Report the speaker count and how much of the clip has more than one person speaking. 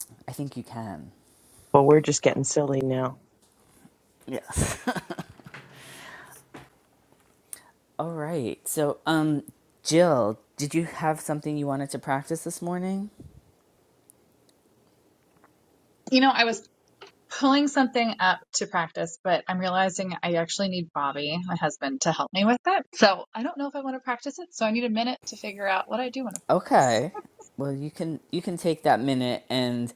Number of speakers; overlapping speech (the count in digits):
3, under 1%